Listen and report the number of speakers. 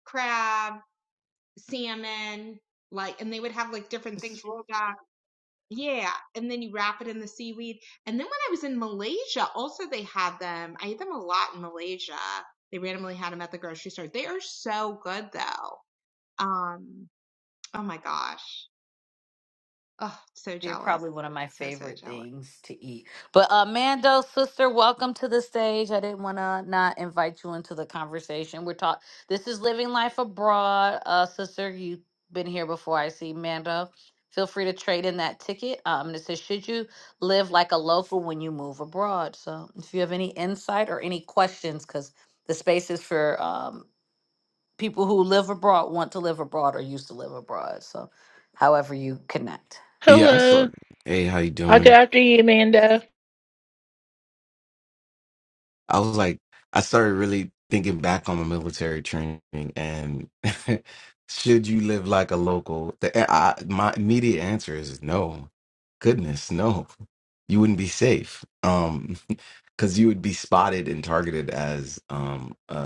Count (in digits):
4